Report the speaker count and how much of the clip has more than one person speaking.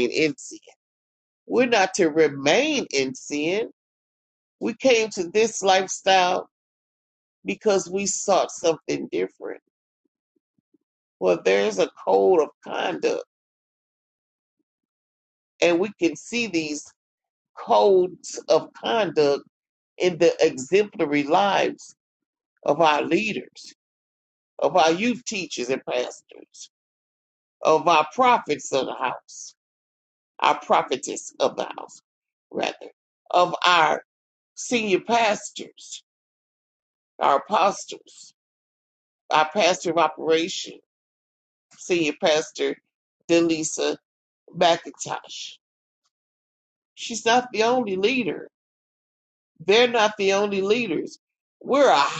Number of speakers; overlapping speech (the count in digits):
1, no overlap